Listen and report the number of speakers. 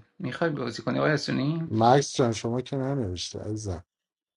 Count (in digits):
2